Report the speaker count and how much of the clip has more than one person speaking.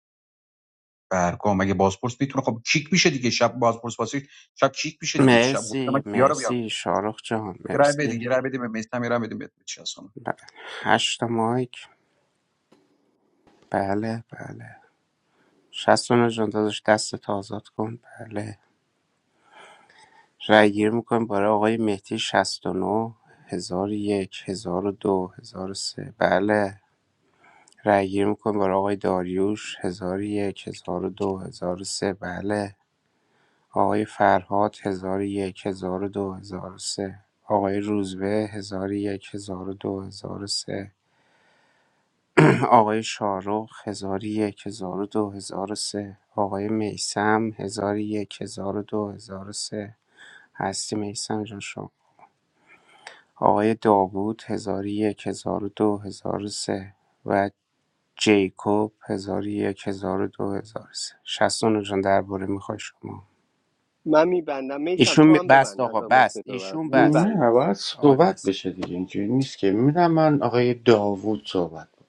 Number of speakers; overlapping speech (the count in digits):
4, about 6%